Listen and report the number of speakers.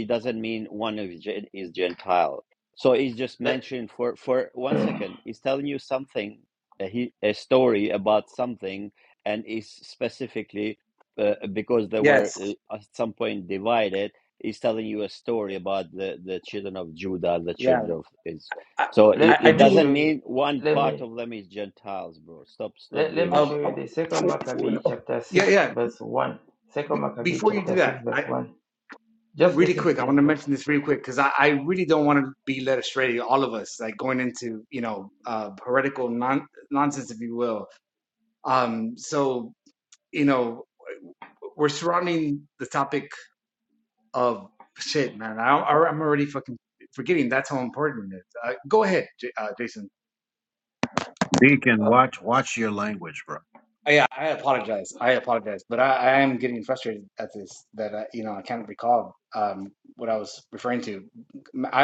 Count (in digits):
4